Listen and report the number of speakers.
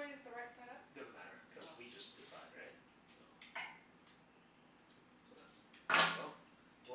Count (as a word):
two